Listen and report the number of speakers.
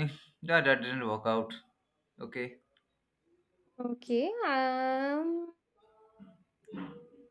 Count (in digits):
2